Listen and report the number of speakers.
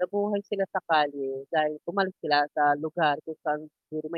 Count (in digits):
1